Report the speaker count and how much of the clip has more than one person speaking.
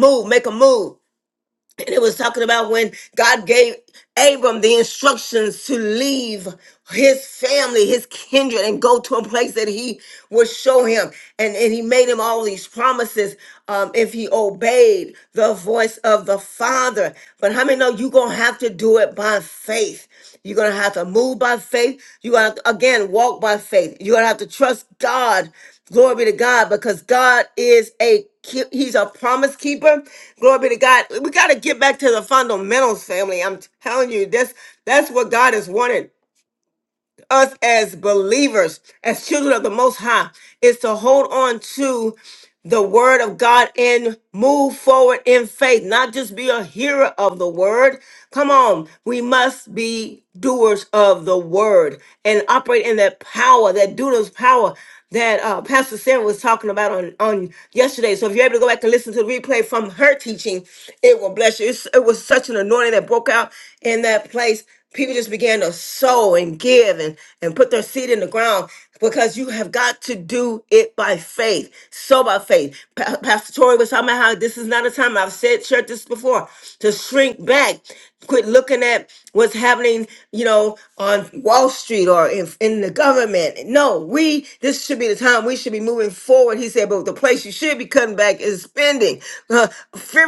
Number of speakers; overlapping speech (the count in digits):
1, no overlap